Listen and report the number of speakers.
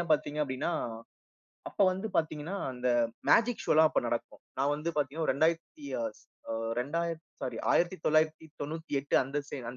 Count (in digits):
1